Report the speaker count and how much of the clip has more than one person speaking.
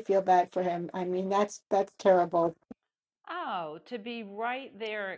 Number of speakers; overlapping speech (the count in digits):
2, no overlap